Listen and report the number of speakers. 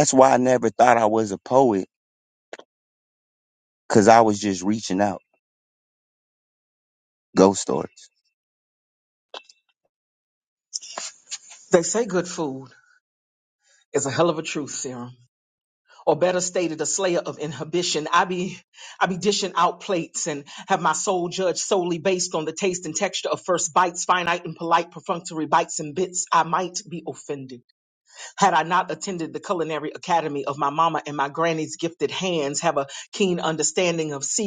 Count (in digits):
2